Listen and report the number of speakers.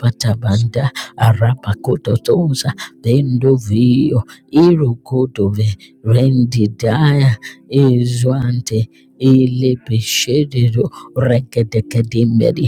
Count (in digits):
1